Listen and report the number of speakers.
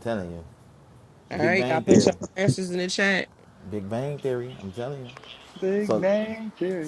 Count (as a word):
three